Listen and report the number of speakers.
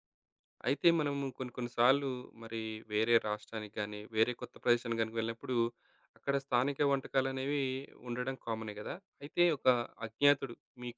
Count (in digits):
1